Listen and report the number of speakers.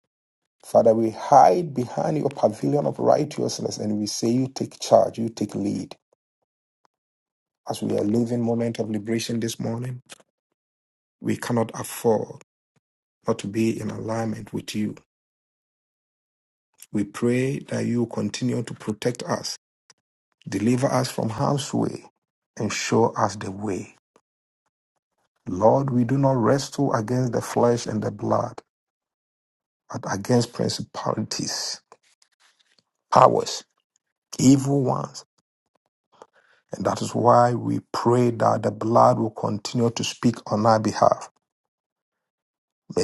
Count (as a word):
one